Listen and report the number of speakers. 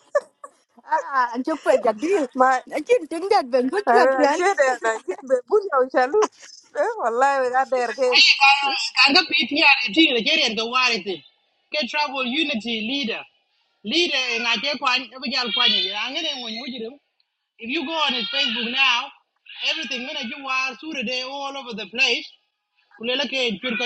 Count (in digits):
3